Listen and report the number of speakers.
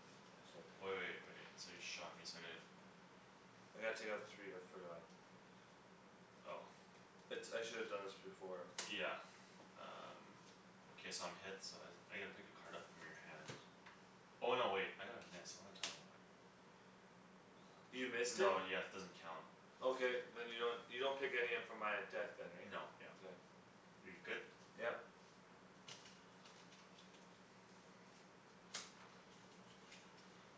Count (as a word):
two